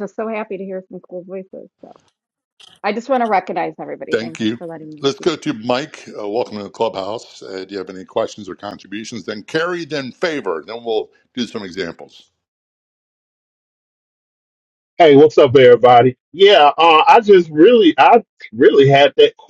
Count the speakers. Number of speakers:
three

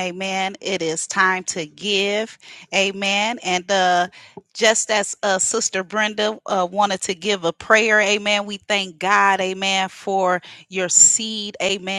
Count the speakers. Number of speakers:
one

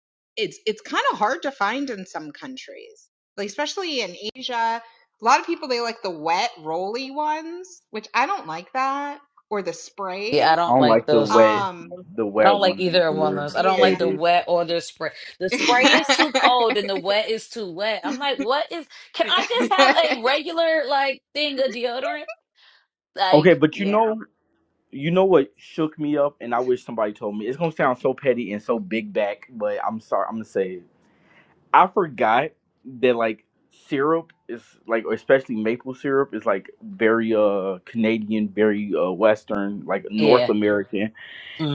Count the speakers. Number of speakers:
three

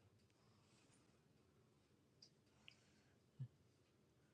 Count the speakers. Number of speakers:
zero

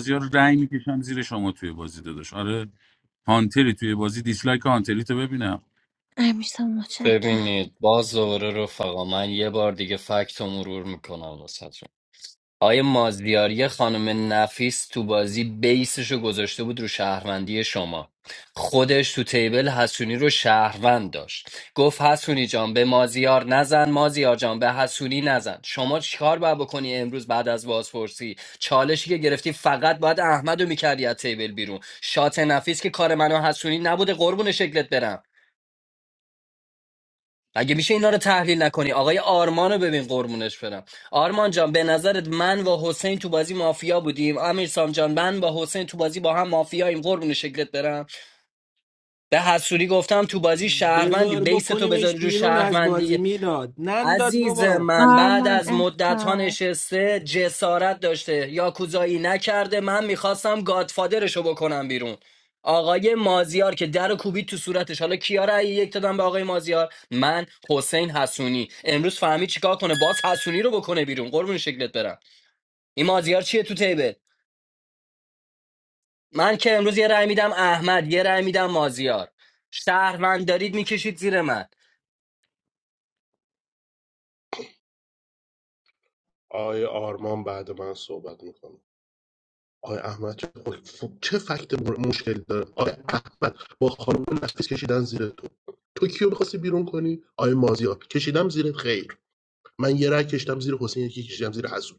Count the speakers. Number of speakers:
five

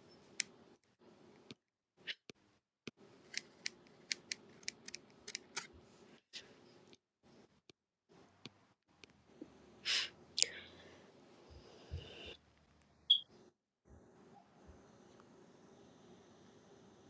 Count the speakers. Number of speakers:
zero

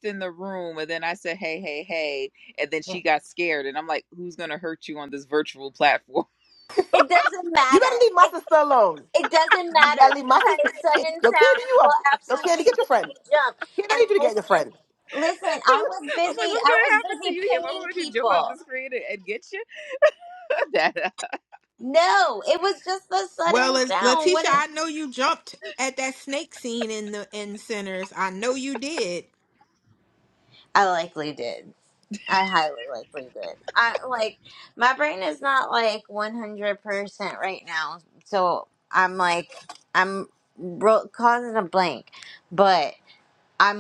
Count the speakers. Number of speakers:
four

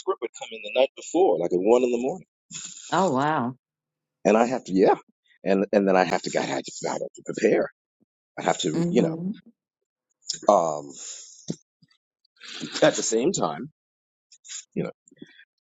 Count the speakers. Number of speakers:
two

